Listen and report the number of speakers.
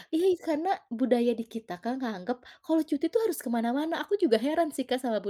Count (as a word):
one